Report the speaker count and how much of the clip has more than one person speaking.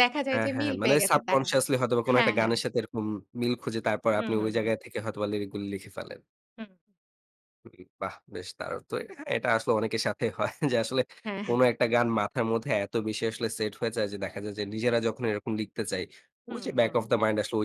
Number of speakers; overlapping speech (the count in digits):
2, about 15%